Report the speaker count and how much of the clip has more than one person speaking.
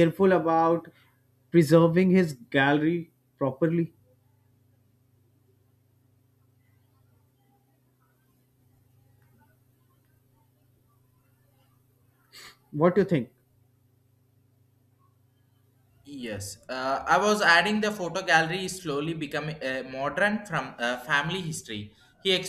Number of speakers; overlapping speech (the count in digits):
2, no overlap